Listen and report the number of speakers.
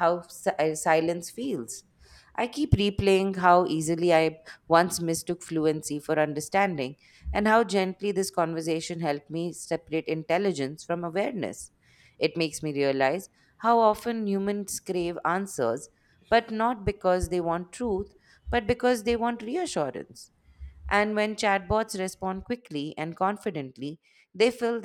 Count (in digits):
1